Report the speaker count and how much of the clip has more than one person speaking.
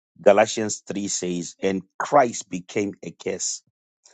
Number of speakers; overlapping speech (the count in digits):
1, no overlap